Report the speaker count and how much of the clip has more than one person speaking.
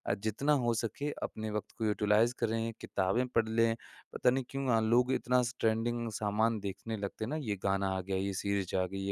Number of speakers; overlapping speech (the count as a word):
one, no overlap